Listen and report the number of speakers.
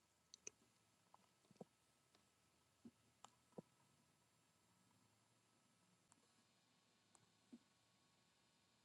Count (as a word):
zero